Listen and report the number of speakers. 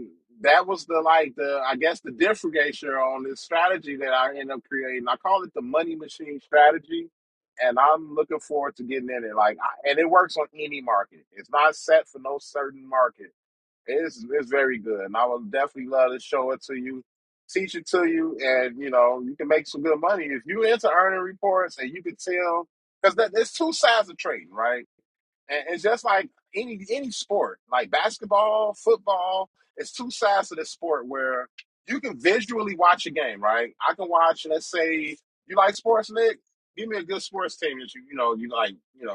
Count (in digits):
1